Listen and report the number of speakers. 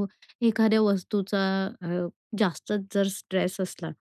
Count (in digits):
1